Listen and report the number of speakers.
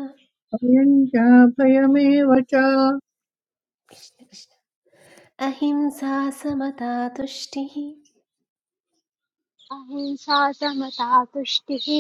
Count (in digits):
3